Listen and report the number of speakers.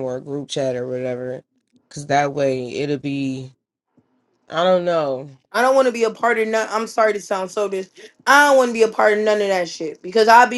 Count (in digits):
2